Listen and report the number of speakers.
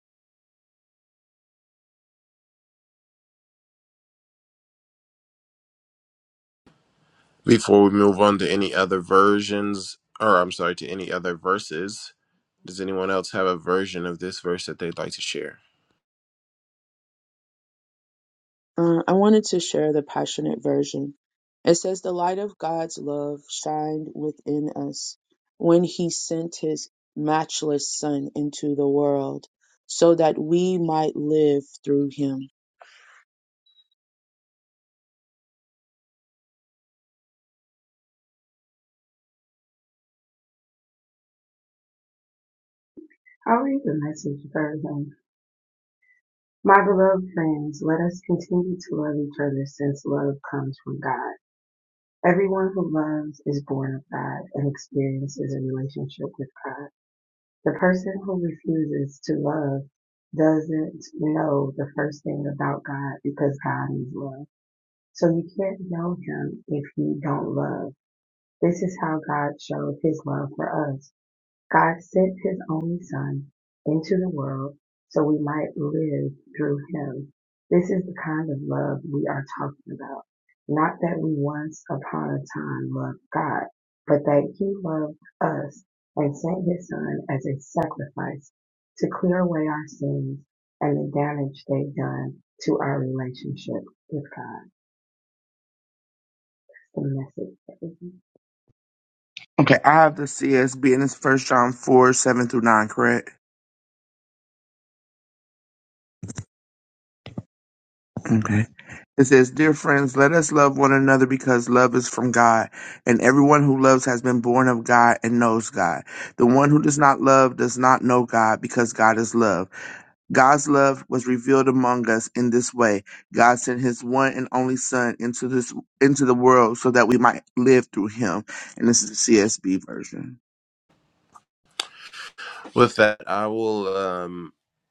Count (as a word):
four